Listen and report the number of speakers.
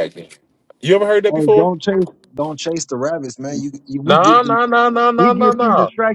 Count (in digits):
2